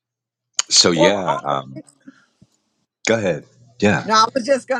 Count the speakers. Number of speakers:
2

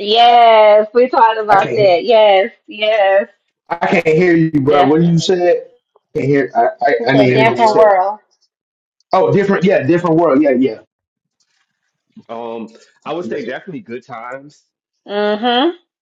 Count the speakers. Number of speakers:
3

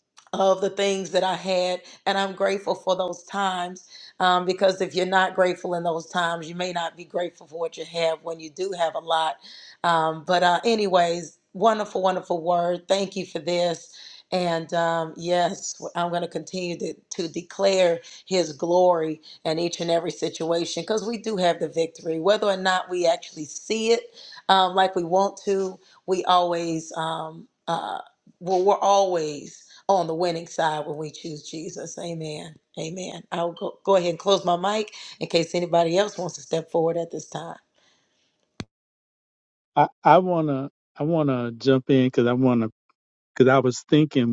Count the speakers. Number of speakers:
2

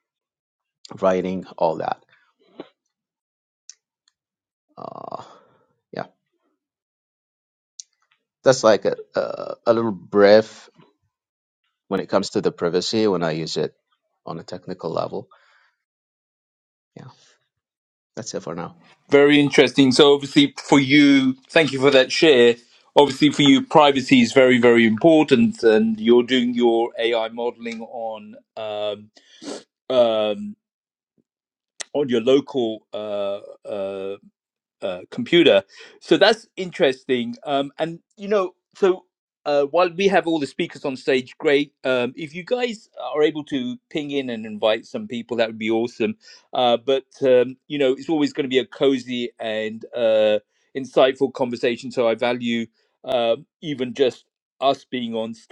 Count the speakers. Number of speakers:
2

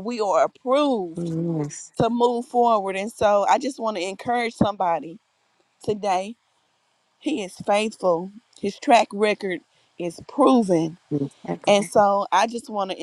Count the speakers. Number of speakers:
2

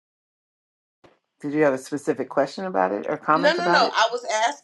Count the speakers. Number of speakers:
2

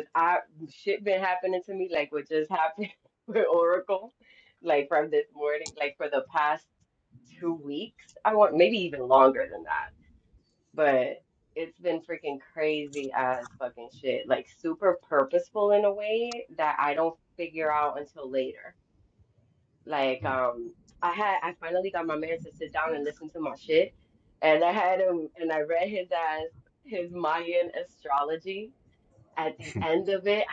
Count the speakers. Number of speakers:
1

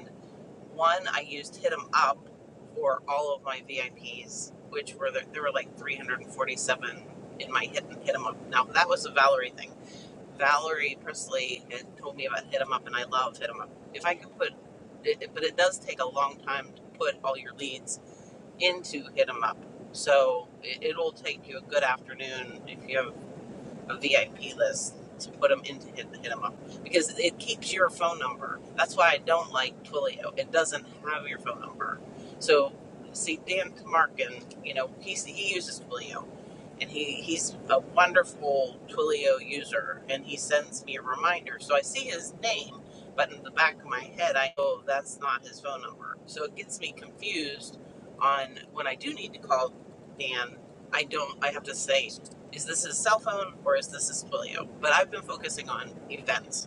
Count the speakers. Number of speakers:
1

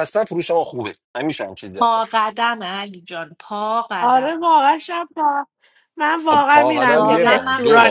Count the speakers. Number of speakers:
3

